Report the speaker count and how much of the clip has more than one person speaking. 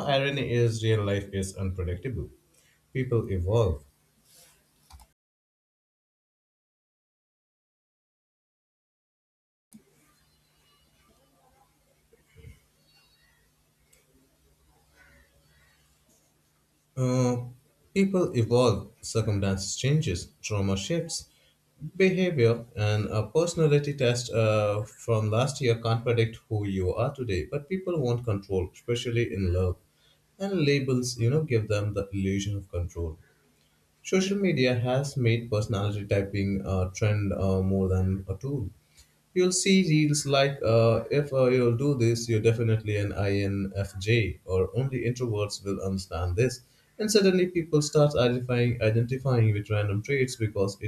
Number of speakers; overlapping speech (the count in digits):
1, no overlap